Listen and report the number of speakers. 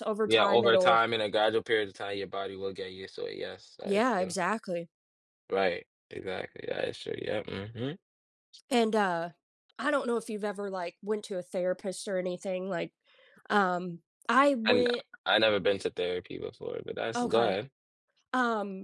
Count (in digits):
2